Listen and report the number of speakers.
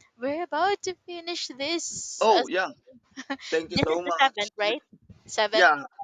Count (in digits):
2